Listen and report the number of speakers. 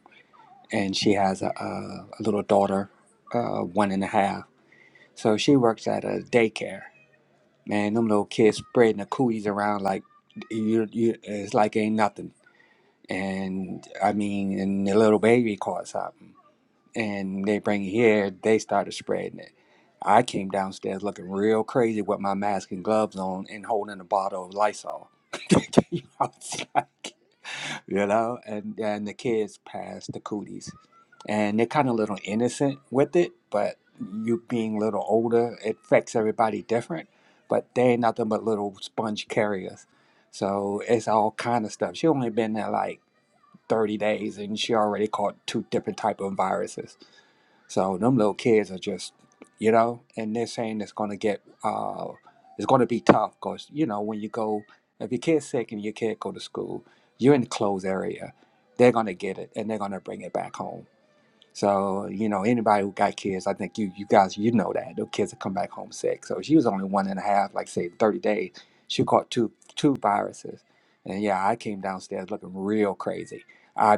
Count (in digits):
1